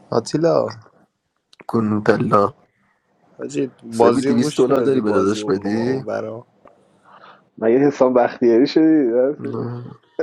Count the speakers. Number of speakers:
3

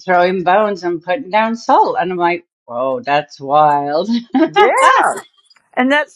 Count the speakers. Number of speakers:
2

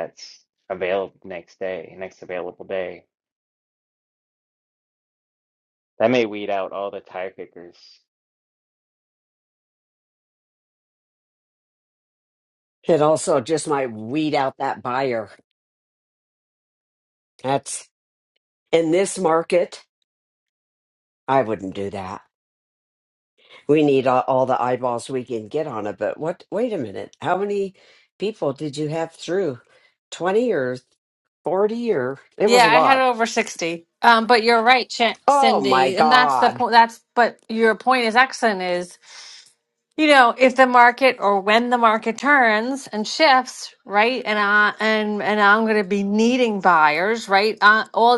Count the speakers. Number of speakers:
3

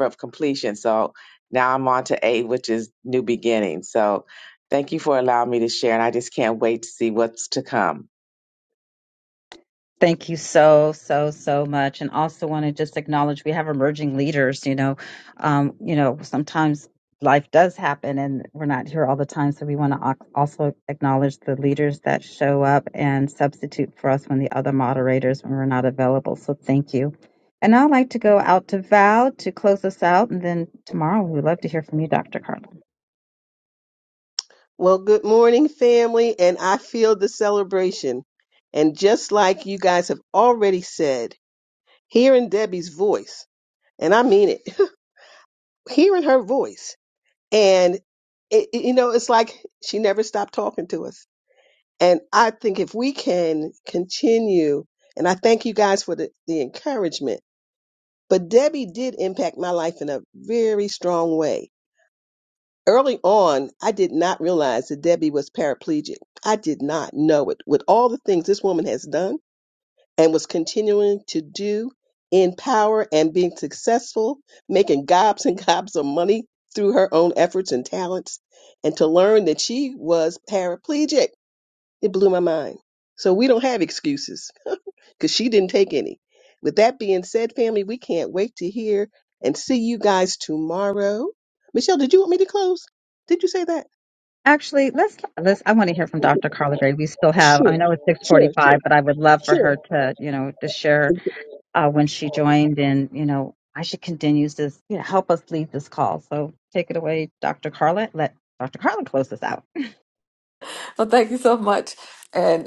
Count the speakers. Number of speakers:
4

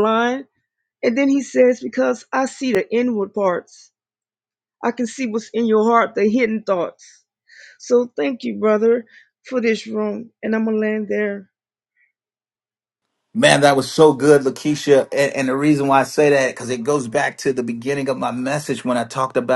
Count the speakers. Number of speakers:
2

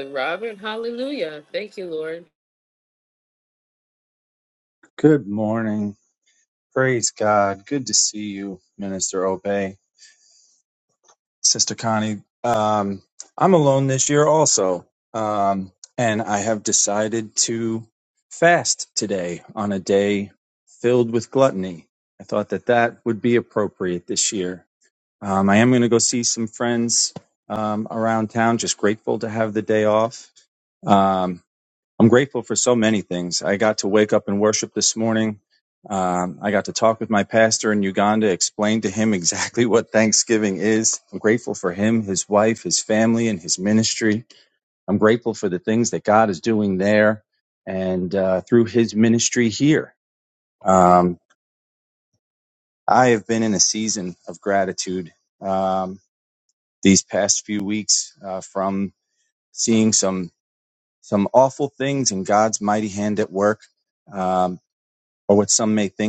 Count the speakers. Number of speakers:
2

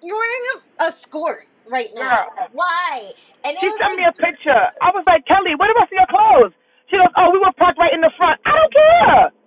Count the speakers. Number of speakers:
2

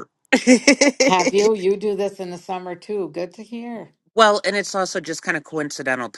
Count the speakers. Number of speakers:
2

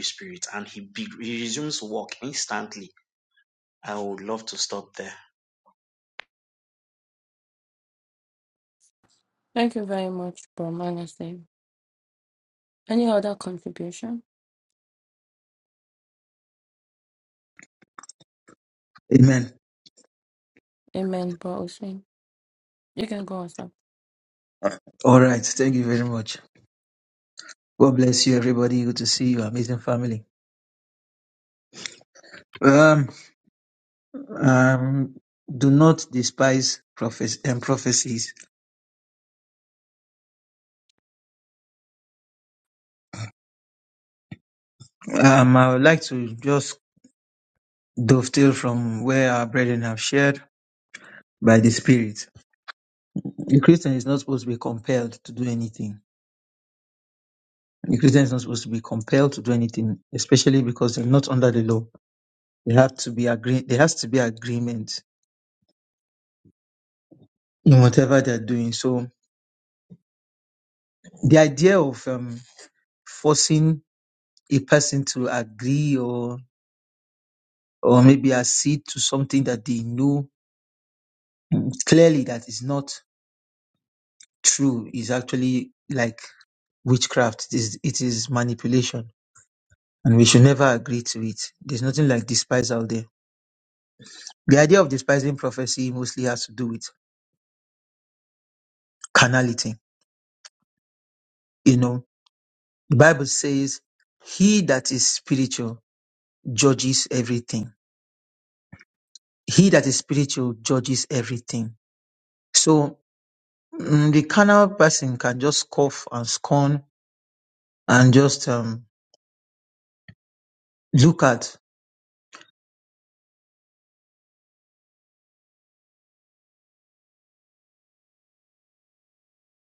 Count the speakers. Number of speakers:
3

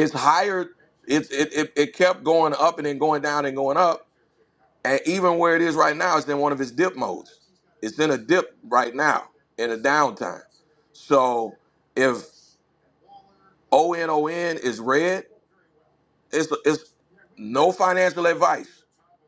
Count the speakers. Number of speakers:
1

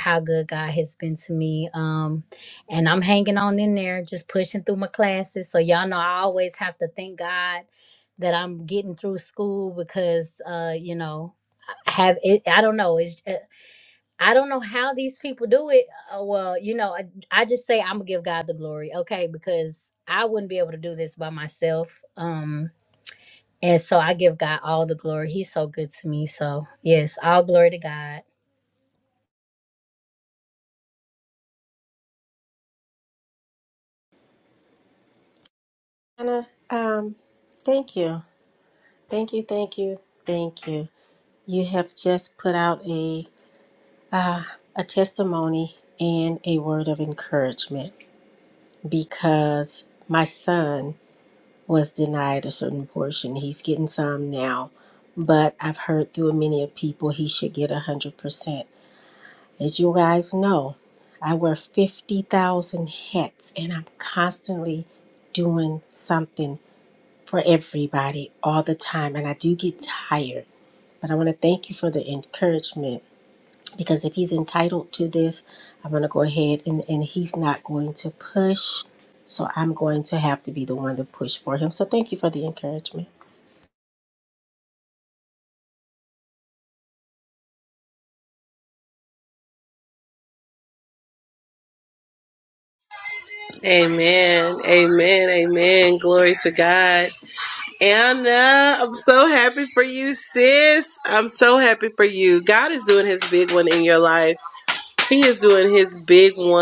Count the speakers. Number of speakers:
3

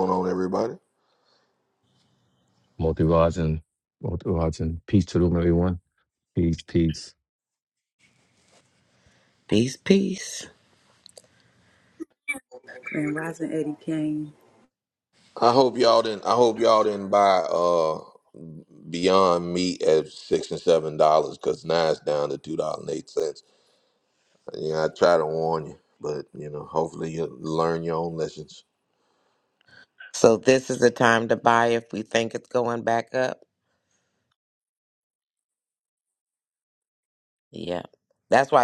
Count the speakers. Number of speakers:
4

